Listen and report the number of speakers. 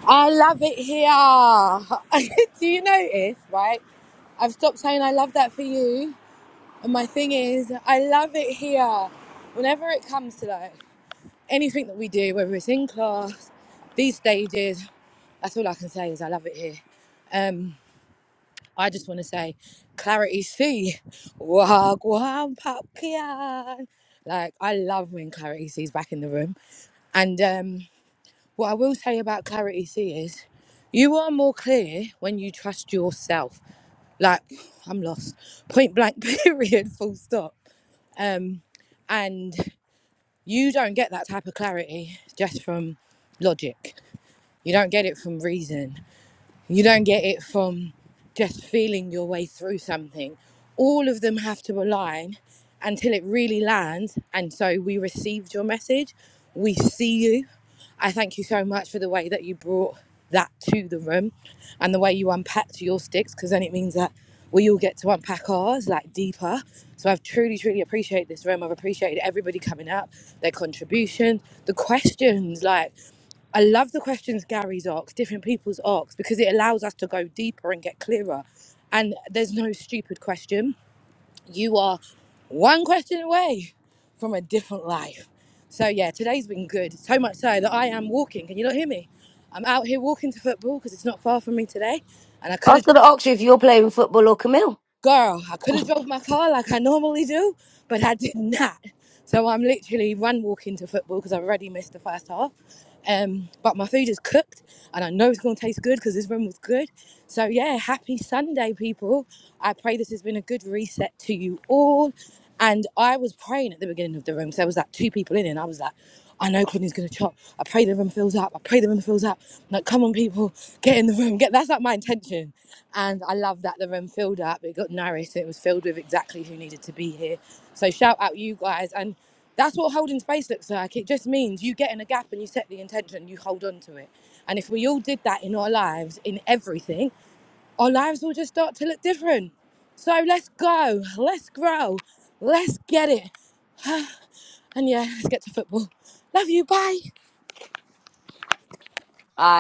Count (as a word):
two